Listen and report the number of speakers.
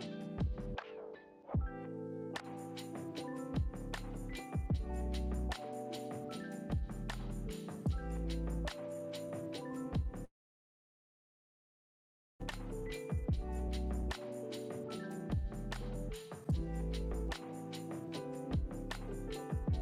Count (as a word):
zero